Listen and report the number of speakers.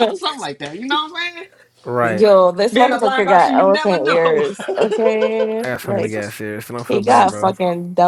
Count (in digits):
3